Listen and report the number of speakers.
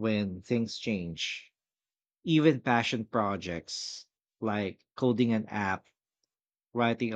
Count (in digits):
1